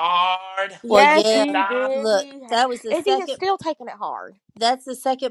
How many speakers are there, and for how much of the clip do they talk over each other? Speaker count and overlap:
3, about 41%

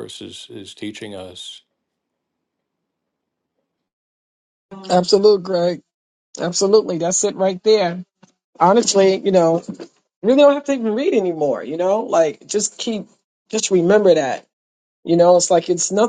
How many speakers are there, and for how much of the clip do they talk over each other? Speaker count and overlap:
2, no overlap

